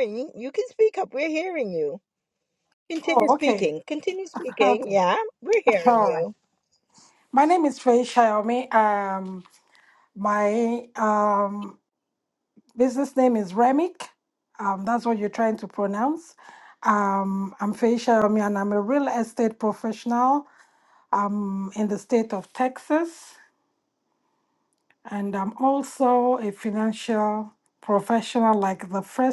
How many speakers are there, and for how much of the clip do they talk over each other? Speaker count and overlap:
2, about 5%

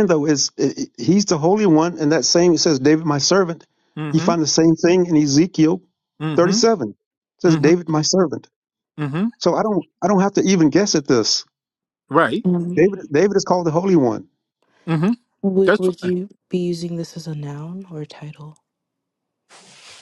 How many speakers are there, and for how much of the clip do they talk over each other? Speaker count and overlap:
3, about 6%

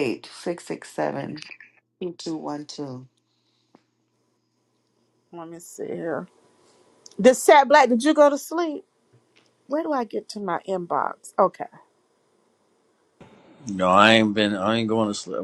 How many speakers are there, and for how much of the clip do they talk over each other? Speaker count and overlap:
3, no overlap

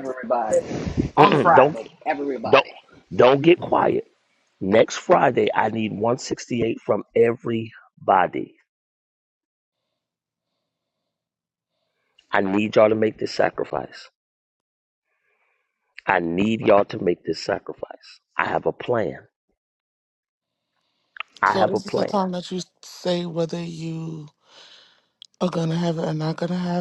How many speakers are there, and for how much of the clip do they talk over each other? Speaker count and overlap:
3, about 5%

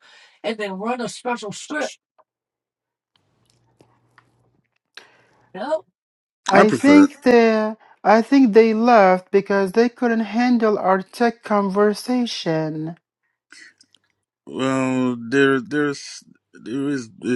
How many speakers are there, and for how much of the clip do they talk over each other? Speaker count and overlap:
3, about 3%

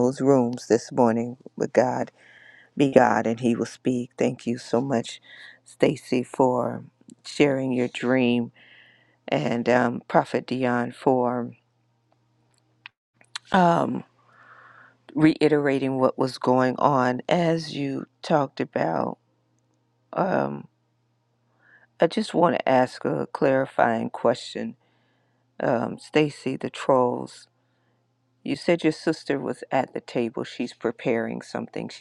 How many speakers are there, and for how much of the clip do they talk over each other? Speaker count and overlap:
1, no overlap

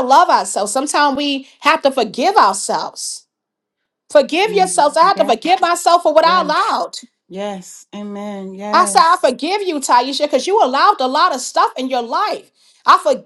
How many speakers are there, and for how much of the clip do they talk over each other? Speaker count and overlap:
2, about 11%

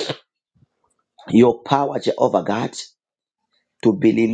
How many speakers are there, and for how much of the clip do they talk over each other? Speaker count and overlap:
1, no overlap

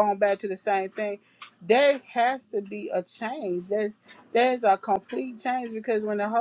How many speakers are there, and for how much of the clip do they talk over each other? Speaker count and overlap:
1, no overlap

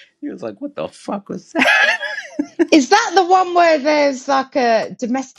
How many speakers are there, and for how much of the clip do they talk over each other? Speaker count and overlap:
2, no overlap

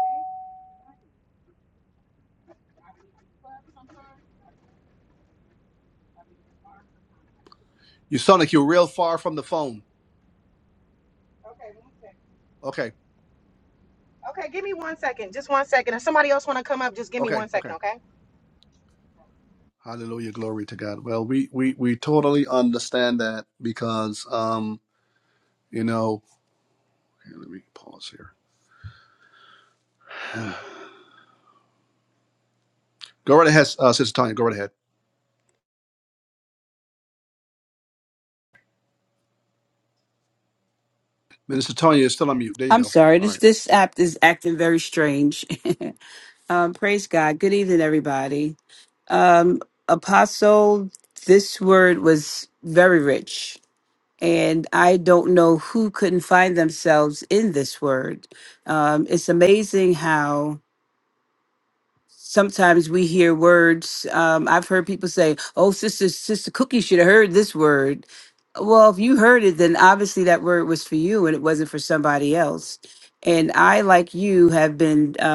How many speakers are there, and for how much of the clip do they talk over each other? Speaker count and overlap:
3, about 2%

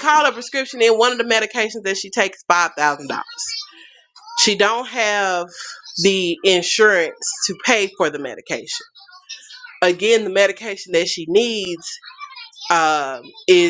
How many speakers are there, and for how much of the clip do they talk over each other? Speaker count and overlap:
1, no overlap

